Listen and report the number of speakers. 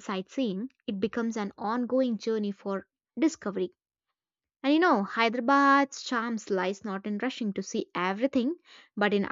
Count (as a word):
one